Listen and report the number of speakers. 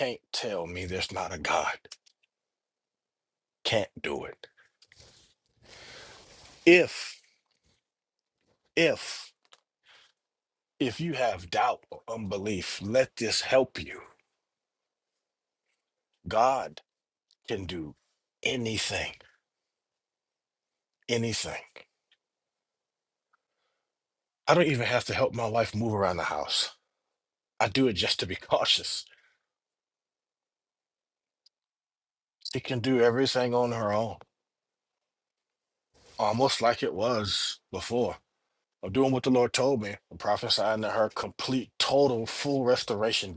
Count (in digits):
1